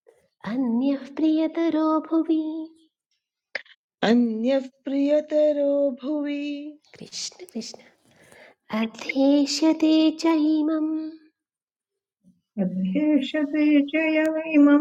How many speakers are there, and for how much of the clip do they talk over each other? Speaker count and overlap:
three, no overlap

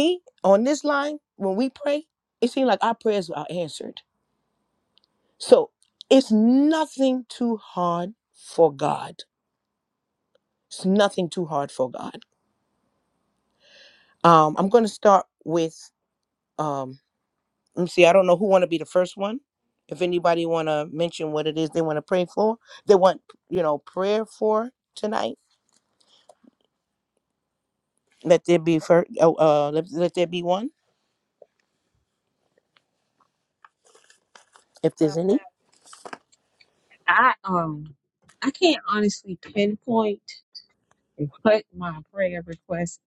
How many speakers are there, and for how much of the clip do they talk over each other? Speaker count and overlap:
two, under 1%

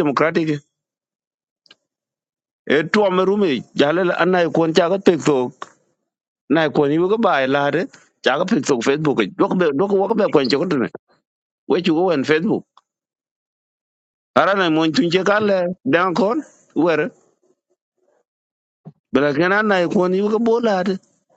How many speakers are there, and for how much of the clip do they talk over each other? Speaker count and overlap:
one, no overlap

